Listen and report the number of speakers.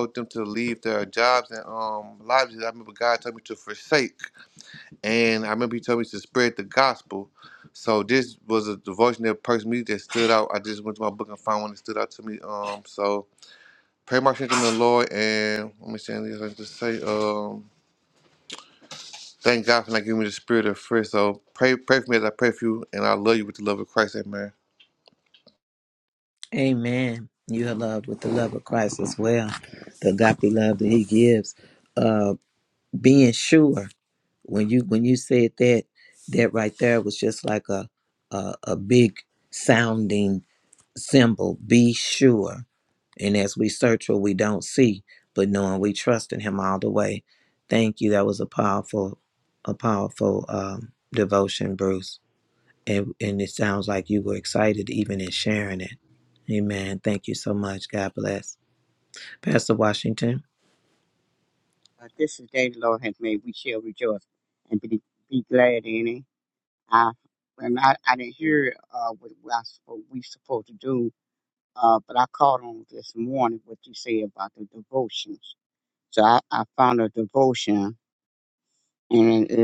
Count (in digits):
3